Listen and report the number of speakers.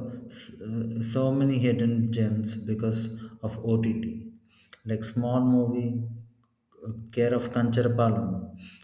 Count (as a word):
one